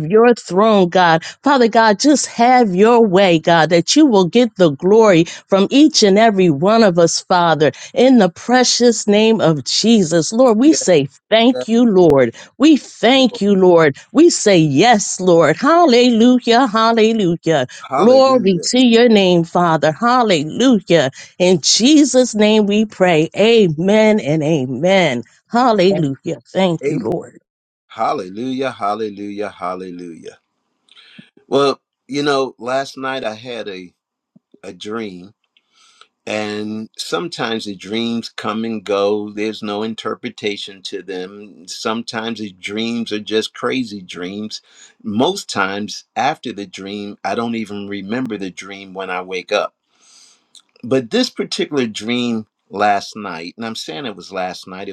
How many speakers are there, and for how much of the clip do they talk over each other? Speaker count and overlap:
two, about 3%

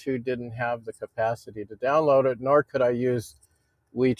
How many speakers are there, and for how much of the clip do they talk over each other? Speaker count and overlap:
one, no overlap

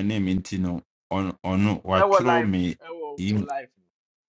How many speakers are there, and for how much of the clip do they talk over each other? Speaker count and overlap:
two, about 20%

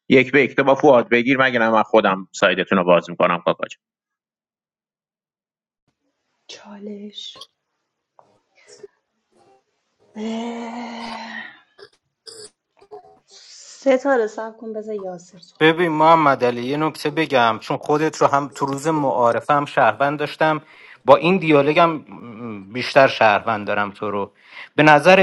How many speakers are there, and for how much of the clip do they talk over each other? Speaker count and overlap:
three, no overlap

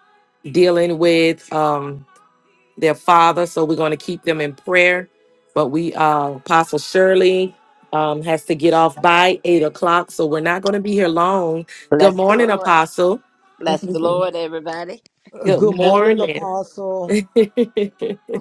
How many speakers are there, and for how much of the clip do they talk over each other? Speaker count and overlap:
three, about 9%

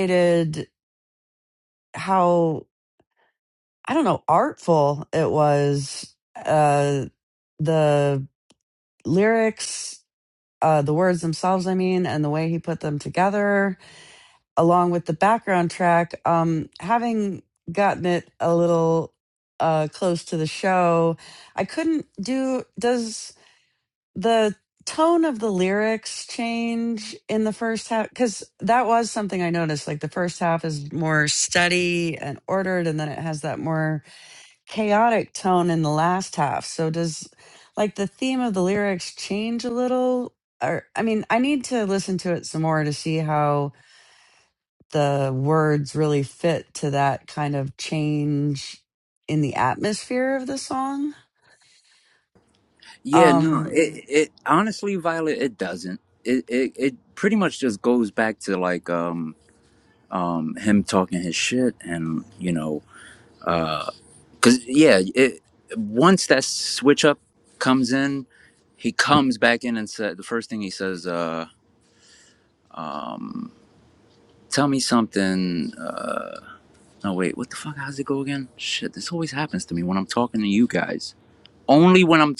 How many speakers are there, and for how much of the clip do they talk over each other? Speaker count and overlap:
two, about 1%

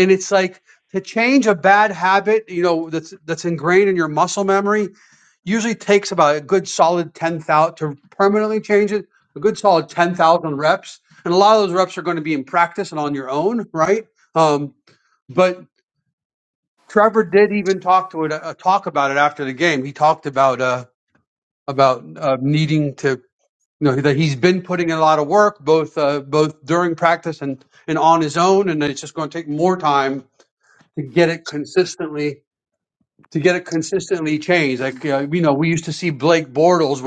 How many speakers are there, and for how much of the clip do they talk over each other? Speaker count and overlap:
one, no overlap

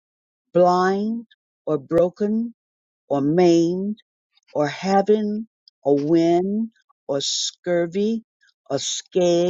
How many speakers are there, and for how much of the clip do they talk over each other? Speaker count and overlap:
one, no overlap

